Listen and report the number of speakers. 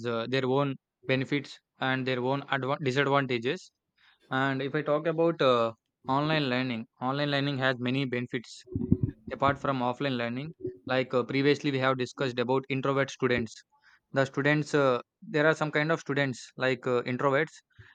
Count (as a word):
one